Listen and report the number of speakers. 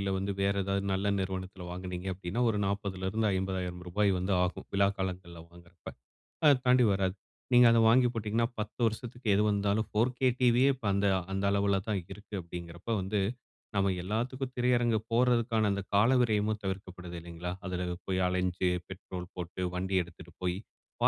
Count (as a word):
one